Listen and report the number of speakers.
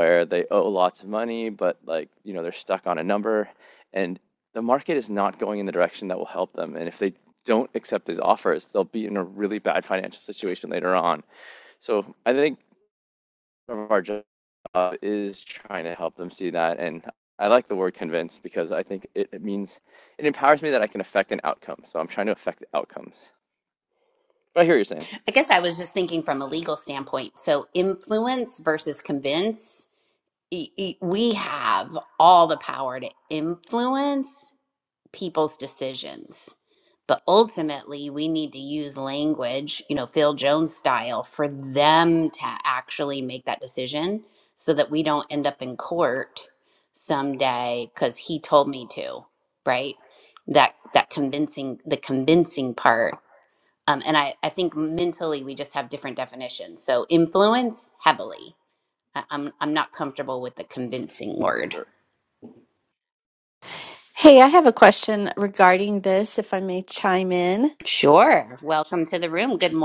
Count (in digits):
3